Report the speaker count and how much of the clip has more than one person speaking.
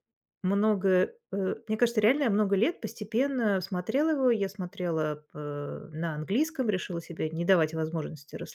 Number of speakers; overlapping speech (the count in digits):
1, no overlap